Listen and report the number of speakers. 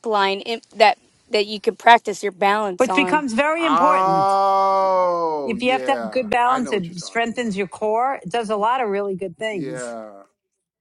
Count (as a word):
three